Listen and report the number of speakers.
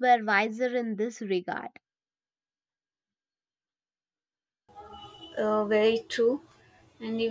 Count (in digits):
2